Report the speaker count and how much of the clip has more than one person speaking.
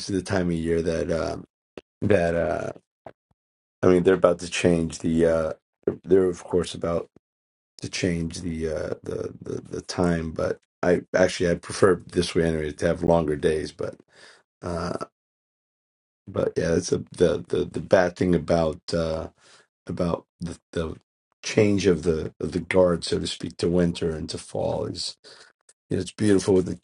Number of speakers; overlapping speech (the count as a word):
one, no overlap